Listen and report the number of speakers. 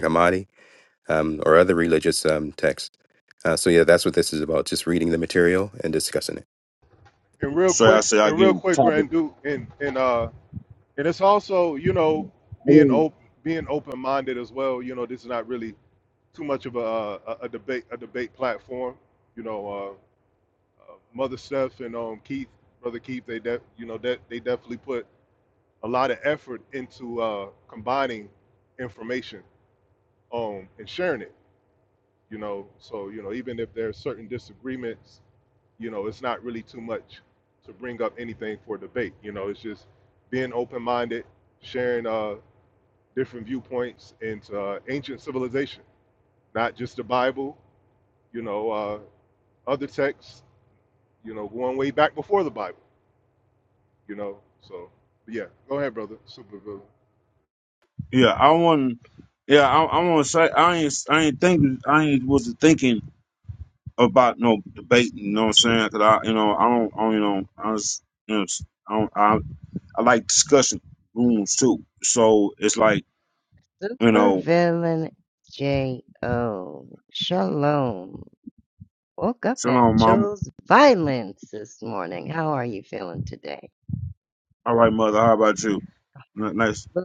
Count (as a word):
four